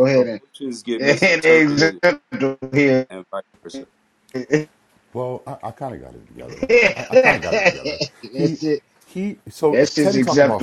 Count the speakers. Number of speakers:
3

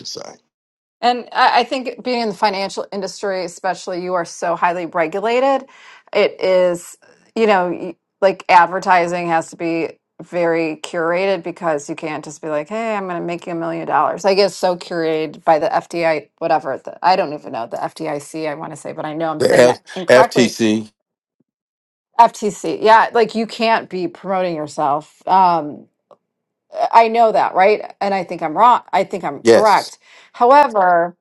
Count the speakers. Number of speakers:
2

